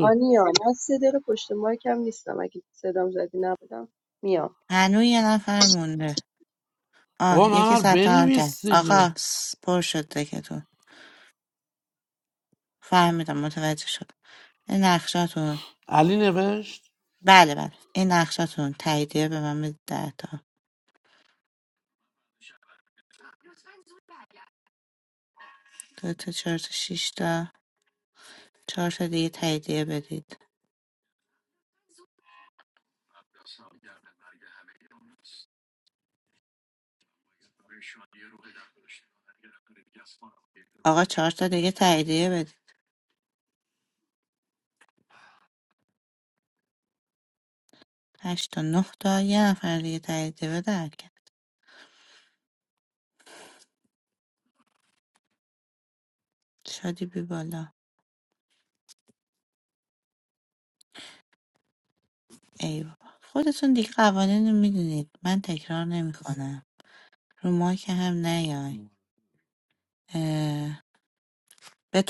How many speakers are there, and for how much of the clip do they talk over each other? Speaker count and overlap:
three, about 3%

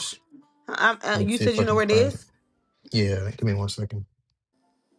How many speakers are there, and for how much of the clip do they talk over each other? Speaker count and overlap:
two, about 21%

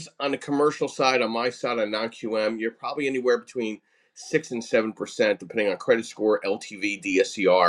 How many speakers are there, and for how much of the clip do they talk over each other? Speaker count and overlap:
one, no overlap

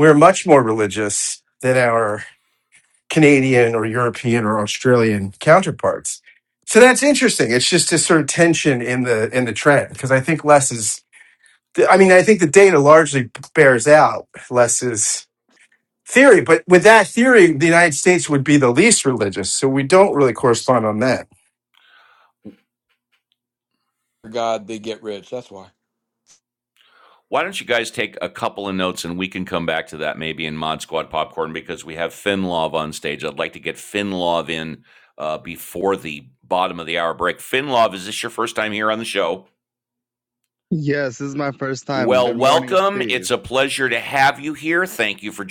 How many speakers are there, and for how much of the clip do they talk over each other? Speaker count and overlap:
four, about 3%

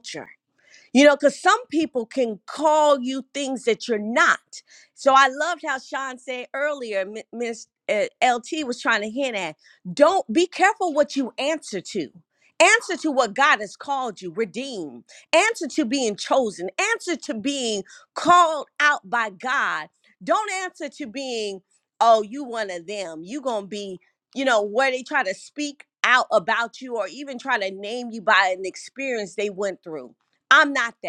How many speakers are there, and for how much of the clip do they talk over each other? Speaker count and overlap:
one, no overlap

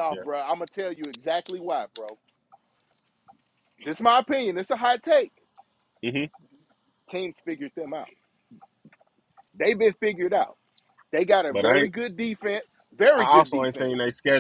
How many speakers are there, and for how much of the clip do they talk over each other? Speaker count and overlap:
two, about 10%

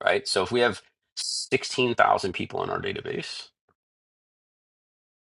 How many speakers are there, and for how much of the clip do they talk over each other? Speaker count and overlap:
one, no overlap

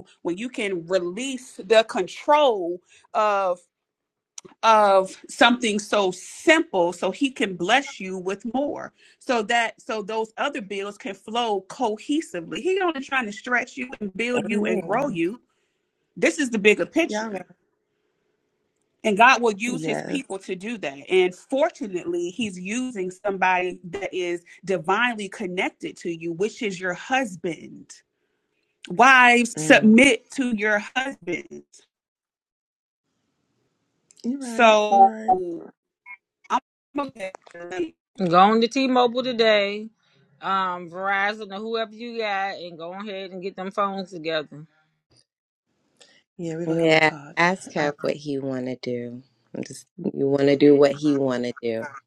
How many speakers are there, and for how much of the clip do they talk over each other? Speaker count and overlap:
four, about 7%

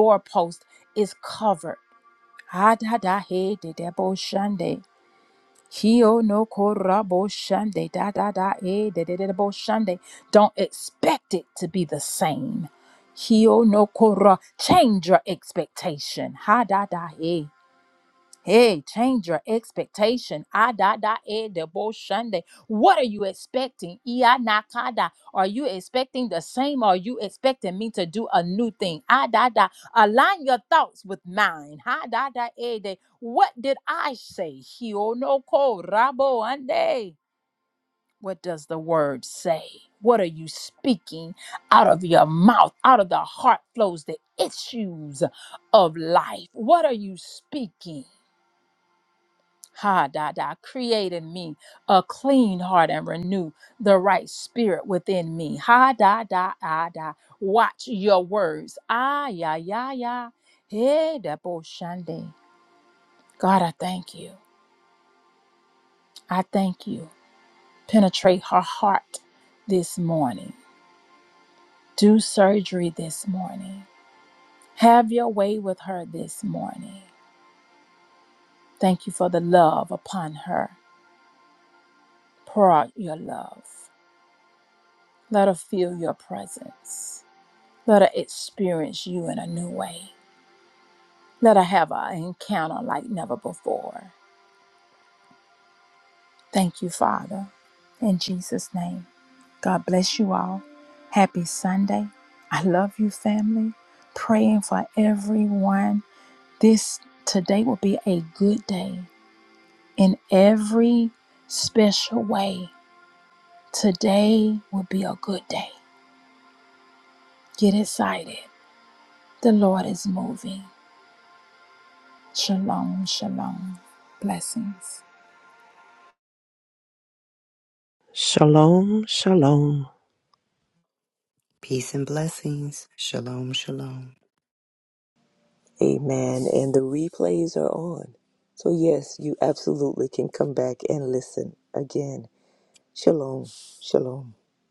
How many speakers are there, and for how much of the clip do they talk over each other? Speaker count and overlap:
four, no overlap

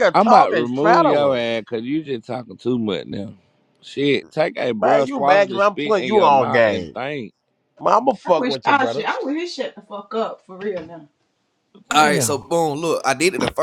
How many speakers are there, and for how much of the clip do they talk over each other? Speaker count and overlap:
four, about 34%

